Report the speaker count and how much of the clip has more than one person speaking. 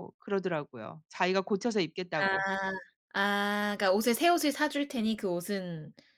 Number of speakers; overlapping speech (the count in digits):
2, about 4%